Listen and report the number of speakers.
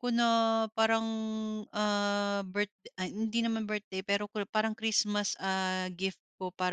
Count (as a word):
one